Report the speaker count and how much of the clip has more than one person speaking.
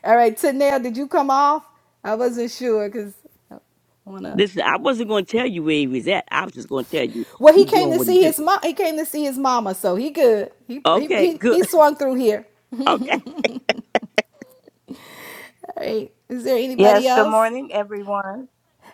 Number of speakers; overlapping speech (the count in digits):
3, about 13%